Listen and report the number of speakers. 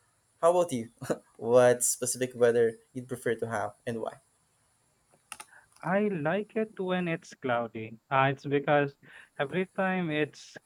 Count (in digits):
2